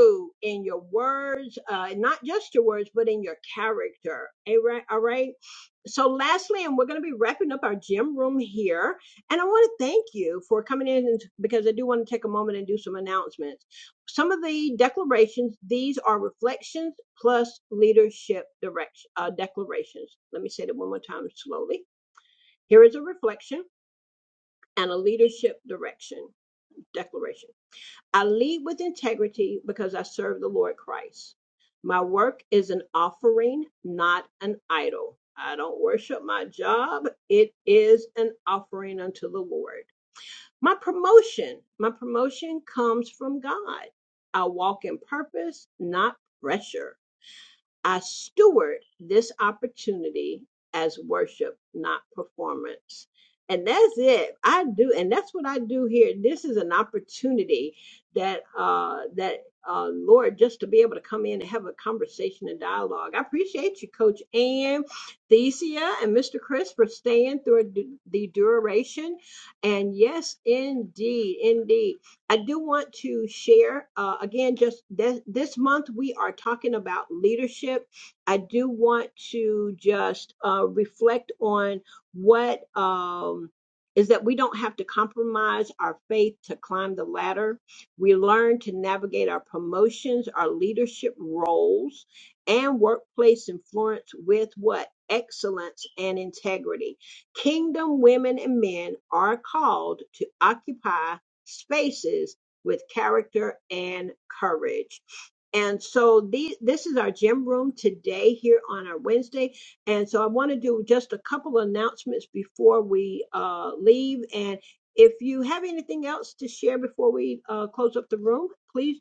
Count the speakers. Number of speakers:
1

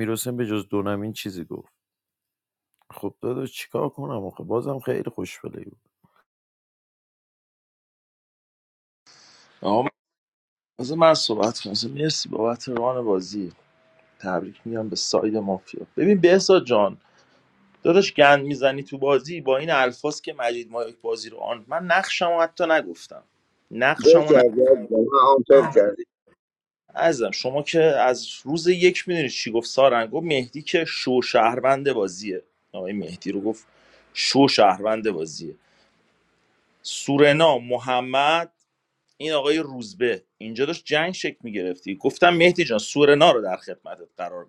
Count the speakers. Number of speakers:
3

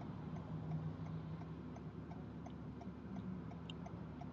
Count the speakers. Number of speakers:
0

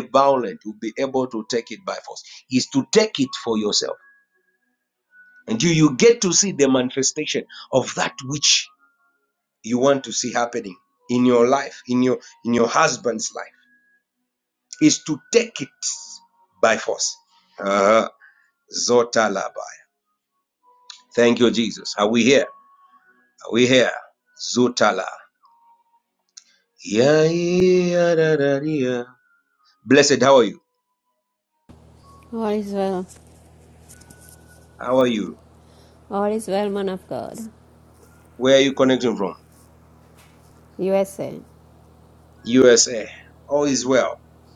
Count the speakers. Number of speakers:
2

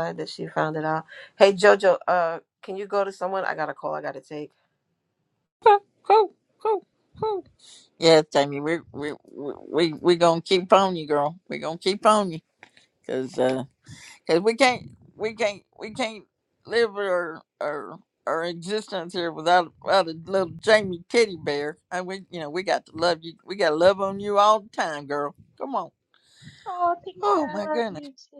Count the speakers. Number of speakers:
3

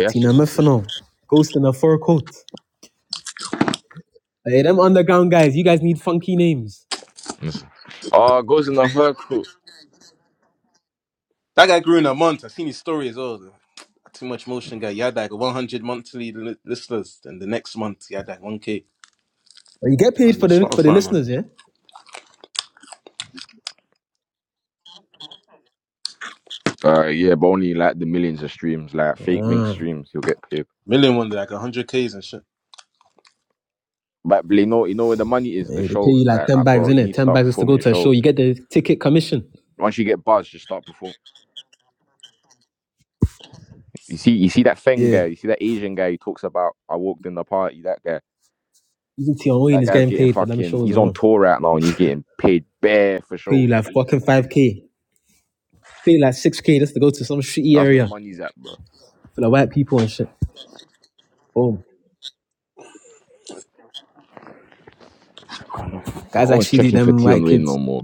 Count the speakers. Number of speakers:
3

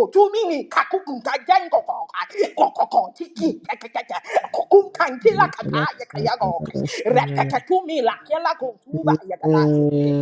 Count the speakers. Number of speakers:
2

